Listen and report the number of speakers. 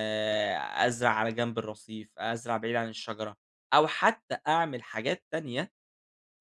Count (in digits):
1